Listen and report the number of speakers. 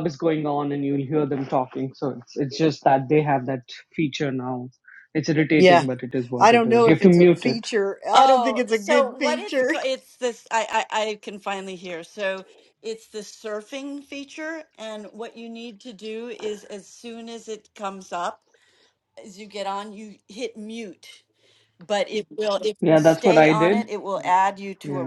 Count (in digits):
3